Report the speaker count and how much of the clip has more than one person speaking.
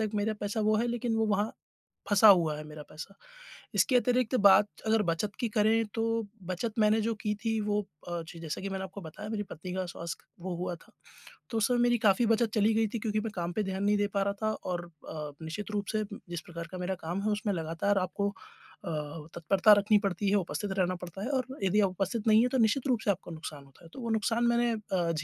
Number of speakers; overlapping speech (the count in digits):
1, no overlap